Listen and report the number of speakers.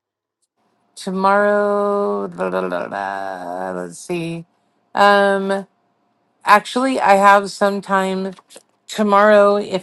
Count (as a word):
one